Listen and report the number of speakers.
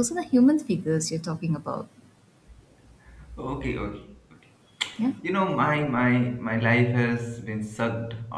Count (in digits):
2